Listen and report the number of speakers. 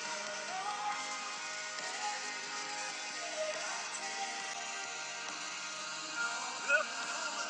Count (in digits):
0